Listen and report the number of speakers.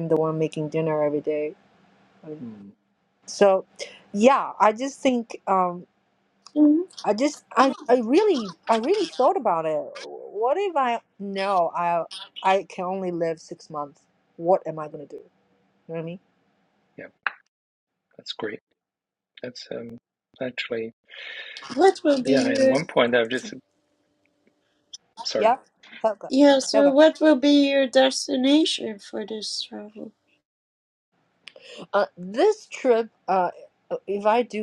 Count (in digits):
3